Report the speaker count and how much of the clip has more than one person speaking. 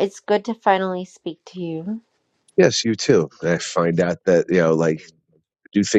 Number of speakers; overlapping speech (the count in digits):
2, no overlap